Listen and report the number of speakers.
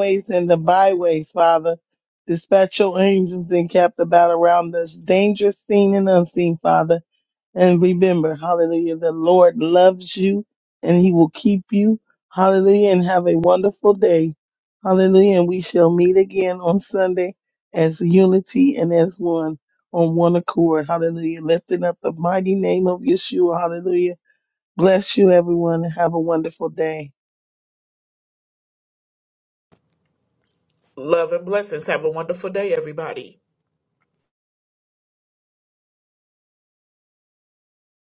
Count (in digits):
2